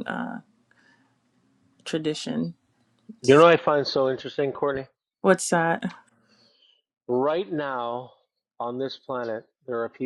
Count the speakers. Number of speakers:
2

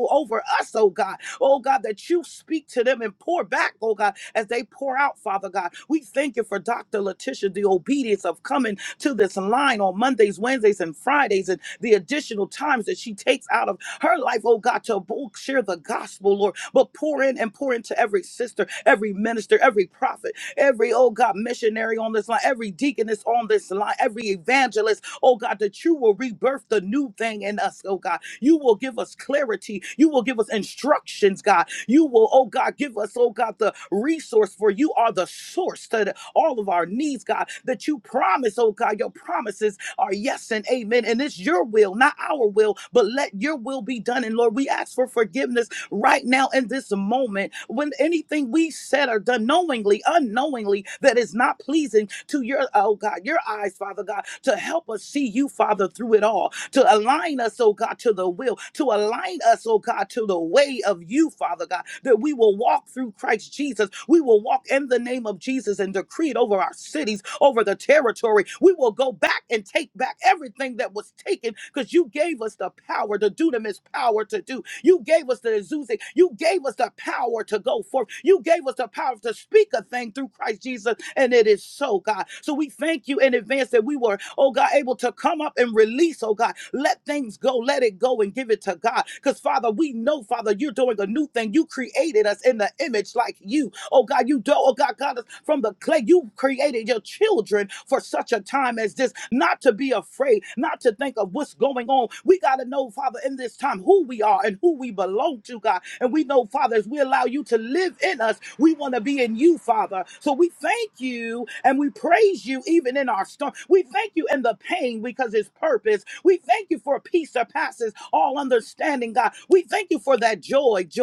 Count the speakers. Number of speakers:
1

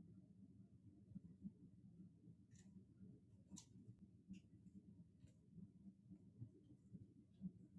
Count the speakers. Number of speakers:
0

